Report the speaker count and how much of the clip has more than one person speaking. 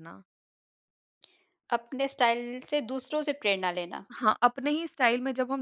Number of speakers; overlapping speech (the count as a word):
two, no overlap